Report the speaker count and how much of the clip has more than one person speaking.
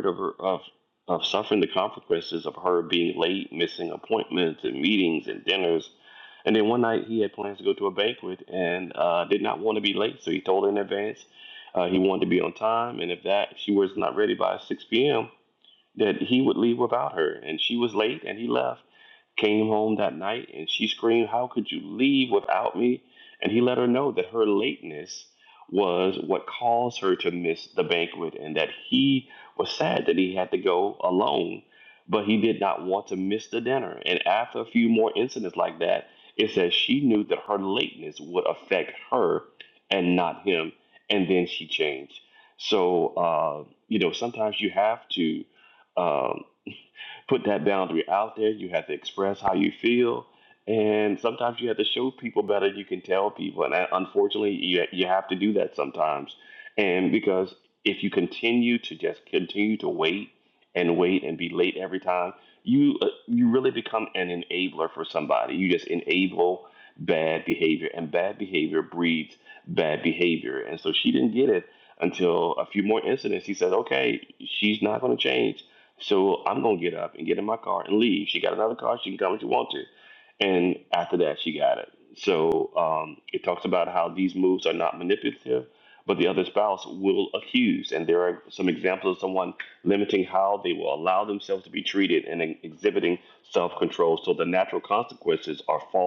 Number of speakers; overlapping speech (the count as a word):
one, no overlap